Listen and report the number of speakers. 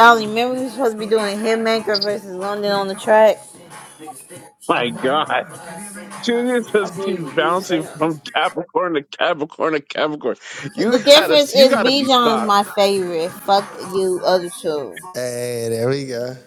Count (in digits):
3